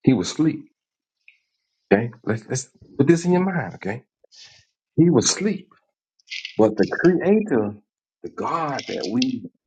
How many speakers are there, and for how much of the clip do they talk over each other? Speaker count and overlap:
1, no overlap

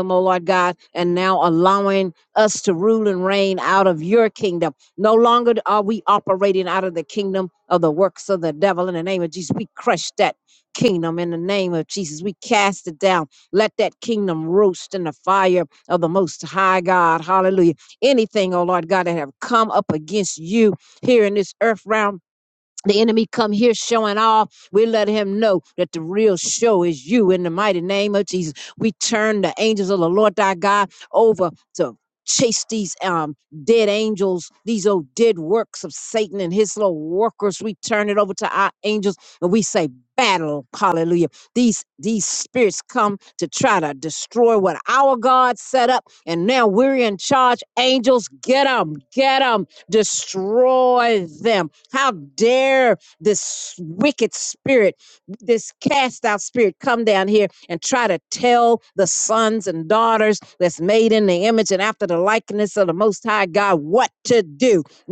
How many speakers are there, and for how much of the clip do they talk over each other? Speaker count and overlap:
1, no overlap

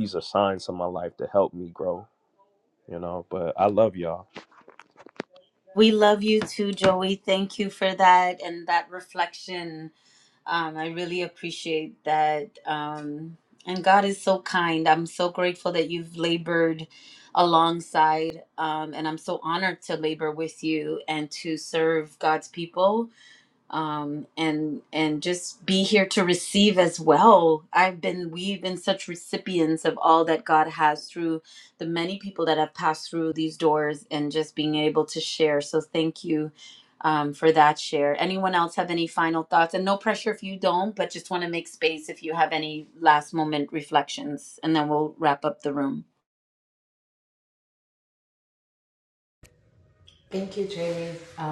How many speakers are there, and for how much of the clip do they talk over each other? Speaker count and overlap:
3, no overlap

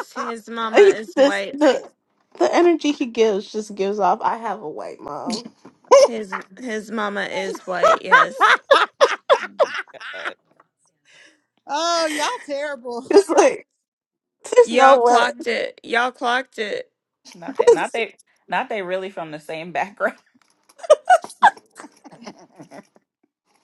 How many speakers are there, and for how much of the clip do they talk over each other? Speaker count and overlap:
4, about 8%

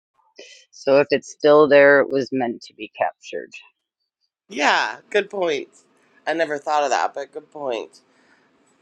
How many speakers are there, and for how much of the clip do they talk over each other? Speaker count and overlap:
2, no overlap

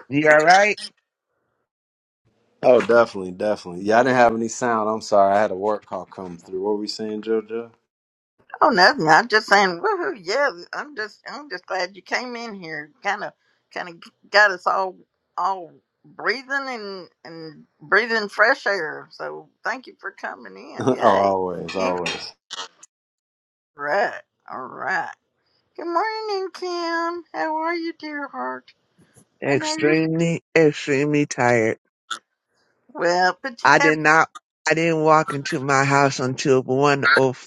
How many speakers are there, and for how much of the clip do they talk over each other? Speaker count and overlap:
3, about 5%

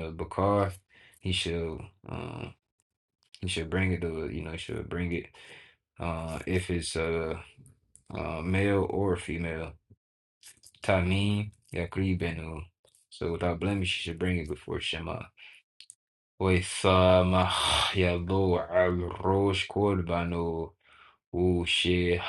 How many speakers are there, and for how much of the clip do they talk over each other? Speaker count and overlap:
1, no overlap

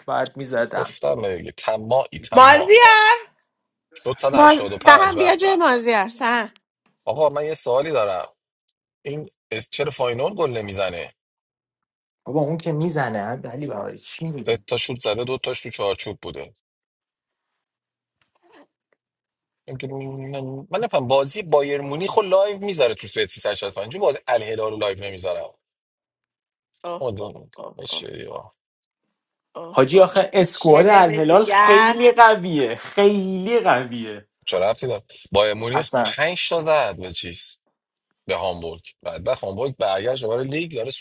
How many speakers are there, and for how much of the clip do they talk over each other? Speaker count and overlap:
3, about 11%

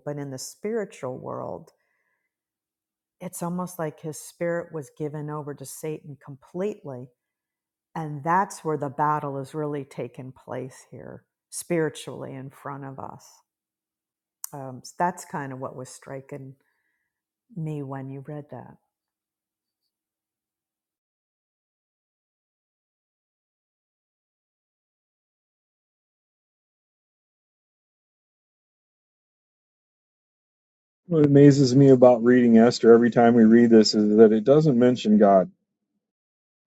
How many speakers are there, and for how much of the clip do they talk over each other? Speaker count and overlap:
2, no overlap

